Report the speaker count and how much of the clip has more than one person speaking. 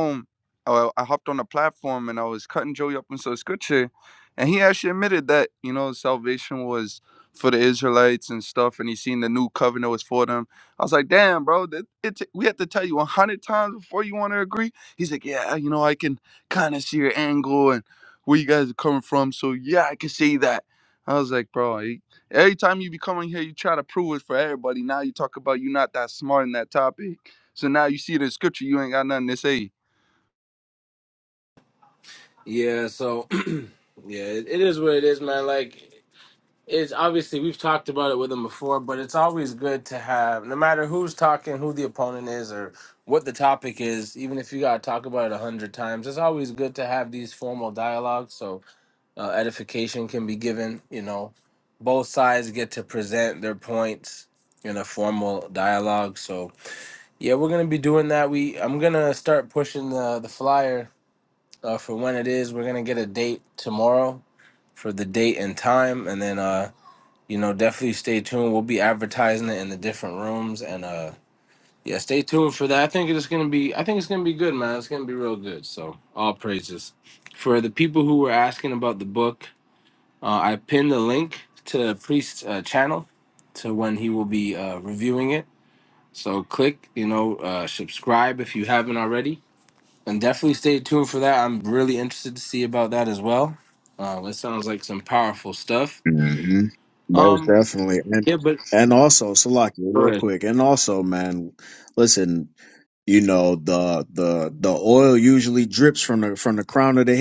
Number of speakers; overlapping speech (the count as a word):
three, about 1%